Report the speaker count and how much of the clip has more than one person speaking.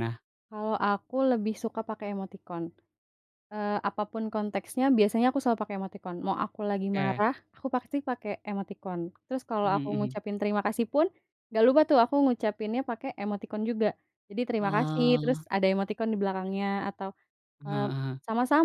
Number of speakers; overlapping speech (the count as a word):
two, about 9%